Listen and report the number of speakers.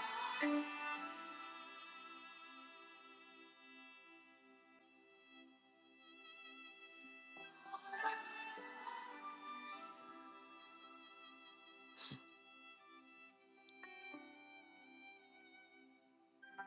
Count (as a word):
zero